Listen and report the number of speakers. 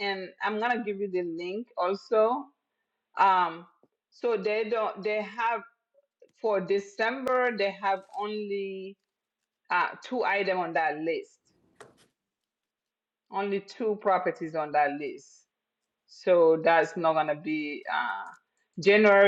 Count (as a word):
one